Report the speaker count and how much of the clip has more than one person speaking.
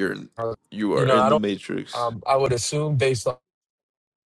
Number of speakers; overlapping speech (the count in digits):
2, about 14%